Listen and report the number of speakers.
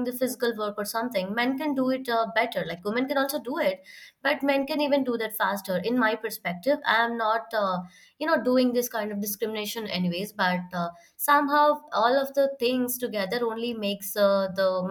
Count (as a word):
one